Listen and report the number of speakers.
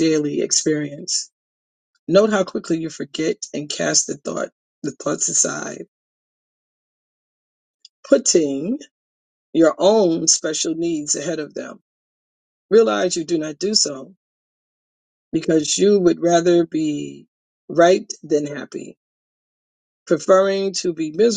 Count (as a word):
one